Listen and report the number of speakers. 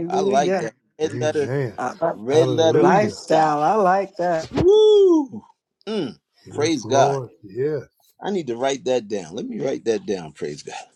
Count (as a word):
three